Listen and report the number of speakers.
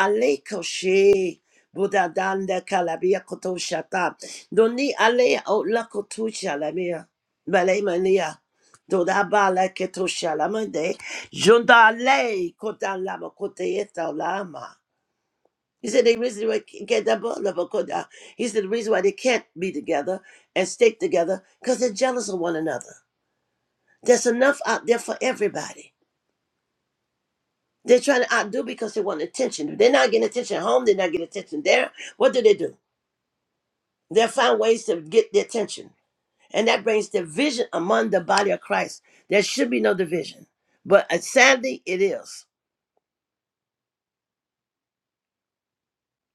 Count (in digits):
1